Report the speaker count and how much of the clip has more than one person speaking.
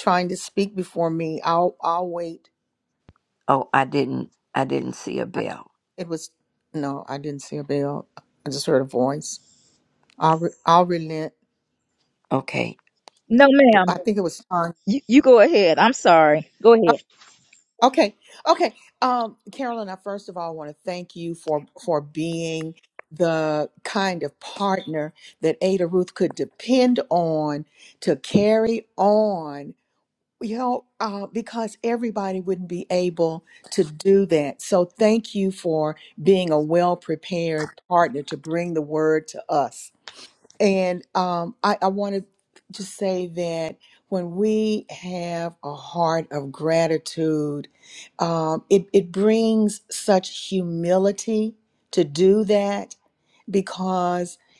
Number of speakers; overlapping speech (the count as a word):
three, about 1%